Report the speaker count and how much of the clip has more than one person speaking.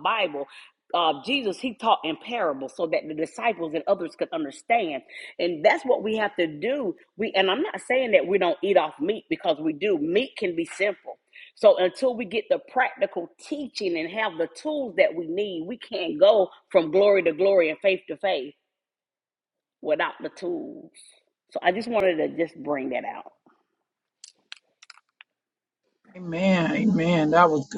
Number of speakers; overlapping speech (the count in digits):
2, no overlap